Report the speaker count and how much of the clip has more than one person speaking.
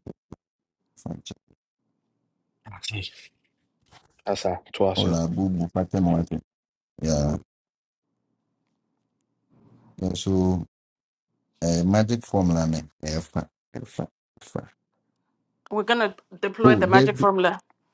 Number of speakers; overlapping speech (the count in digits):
3, about 5%